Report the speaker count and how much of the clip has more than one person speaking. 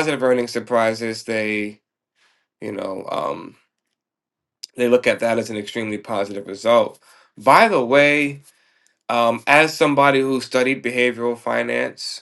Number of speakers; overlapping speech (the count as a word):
one, no overlap